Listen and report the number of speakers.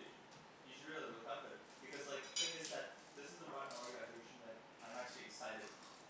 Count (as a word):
one